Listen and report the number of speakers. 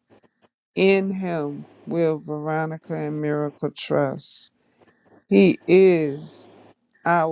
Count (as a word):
one